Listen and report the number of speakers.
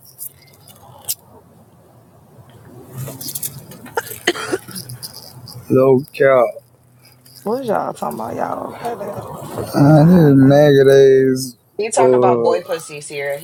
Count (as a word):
three